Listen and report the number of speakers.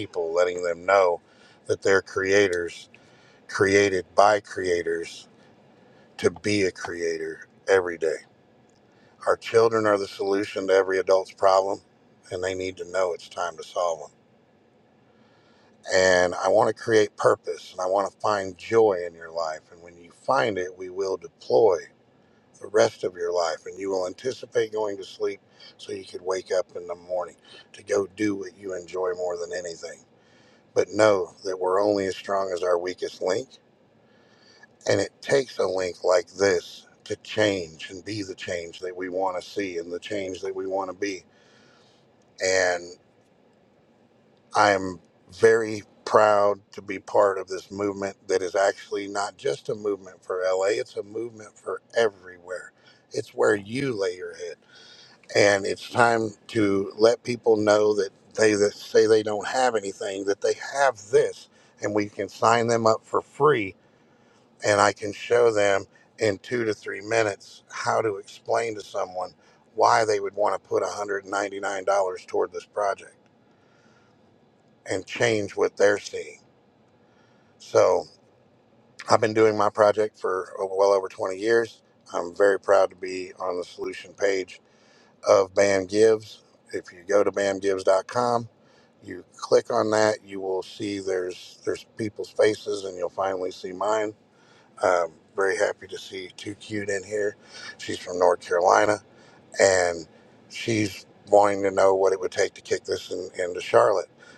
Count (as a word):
one